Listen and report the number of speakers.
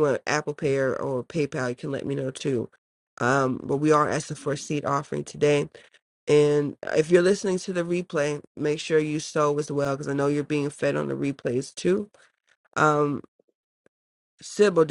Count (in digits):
1